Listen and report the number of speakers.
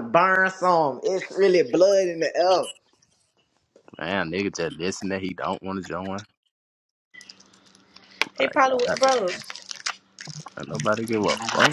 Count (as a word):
three